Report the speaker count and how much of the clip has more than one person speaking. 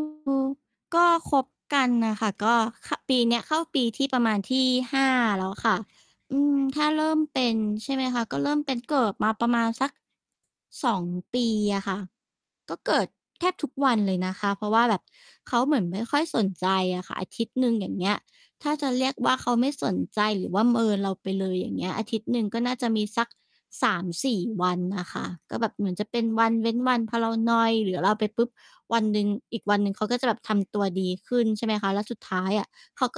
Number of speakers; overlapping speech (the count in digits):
1, no overlap